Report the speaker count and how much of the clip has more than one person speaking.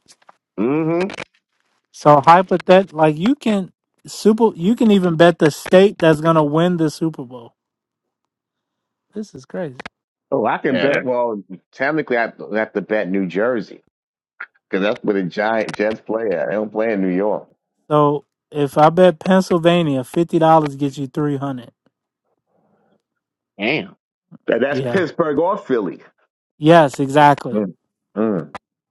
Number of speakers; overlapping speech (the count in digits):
3, about 2%